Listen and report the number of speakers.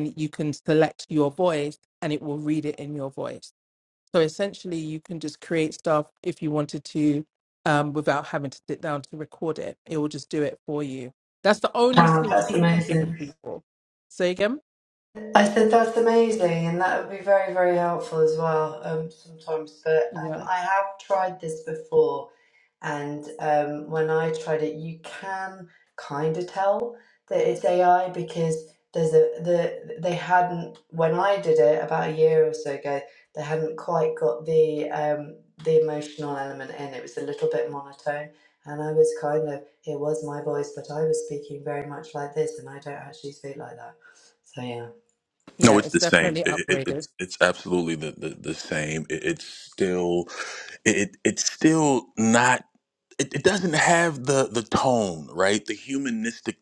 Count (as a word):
three